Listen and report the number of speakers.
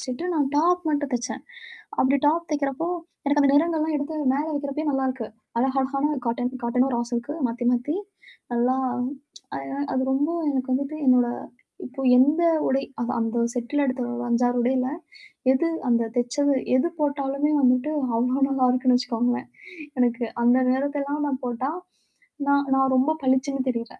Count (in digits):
1